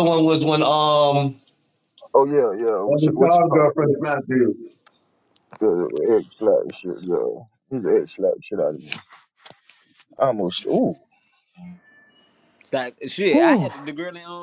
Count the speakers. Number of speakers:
3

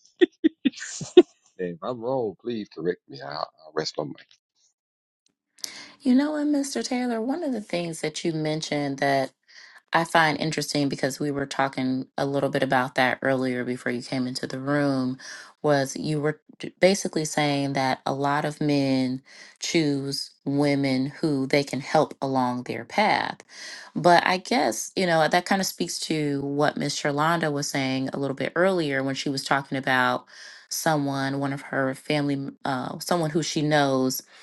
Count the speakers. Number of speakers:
2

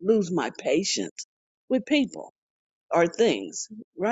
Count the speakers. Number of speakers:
1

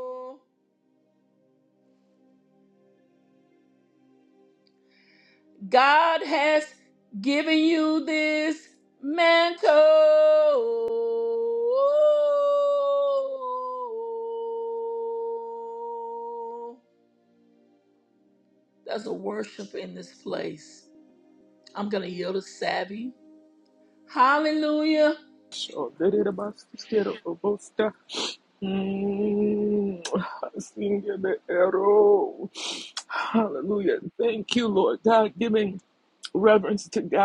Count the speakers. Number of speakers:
2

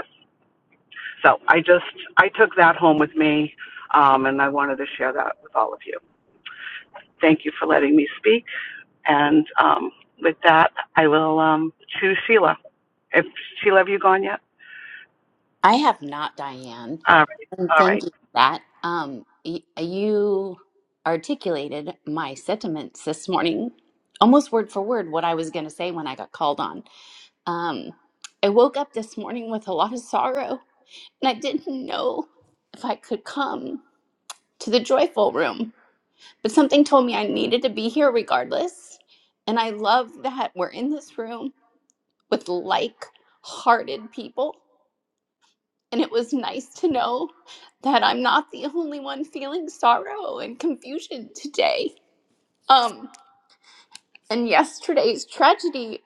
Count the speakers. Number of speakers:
2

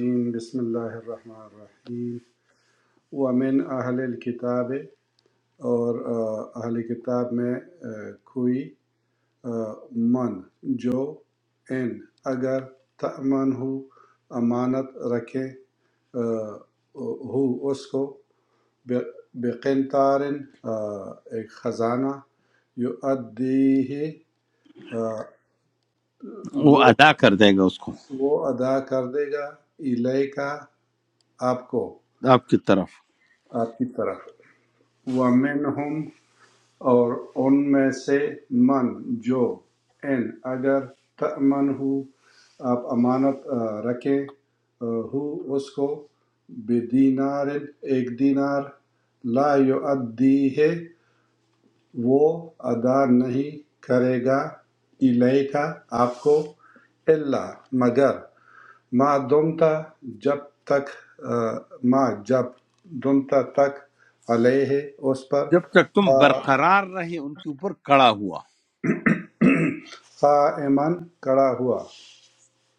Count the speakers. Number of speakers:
2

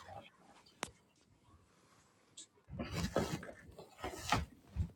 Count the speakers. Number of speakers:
0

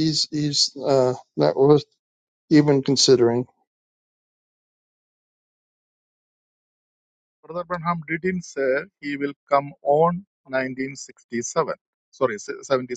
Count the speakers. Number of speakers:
2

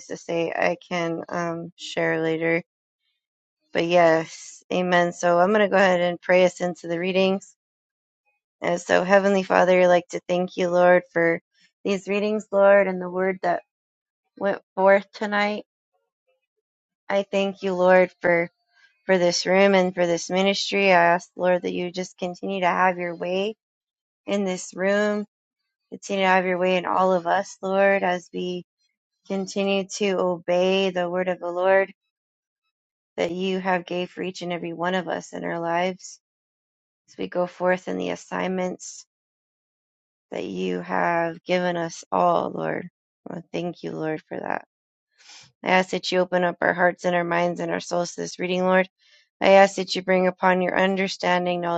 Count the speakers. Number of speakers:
1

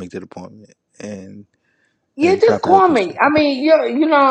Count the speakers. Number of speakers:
2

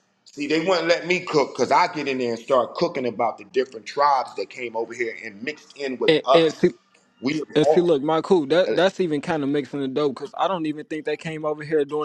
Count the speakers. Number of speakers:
2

